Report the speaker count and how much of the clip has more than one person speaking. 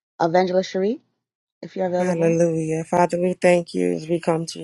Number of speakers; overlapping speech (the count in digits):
2, about 8%